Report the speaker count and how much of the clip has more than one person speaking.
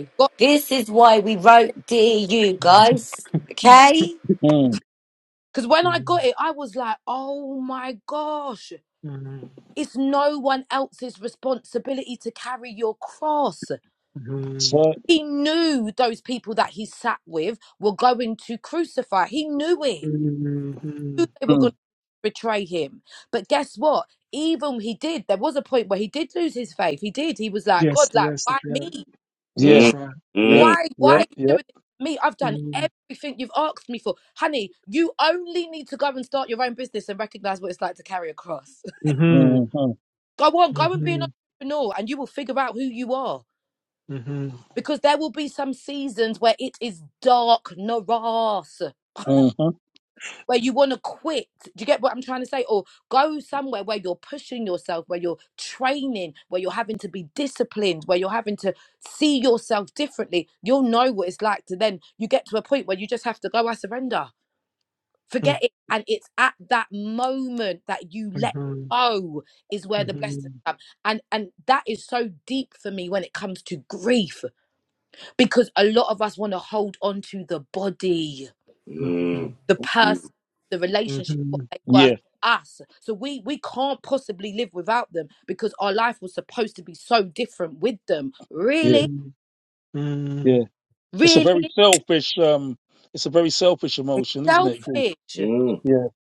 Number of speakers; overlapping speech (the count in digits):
5, about 7%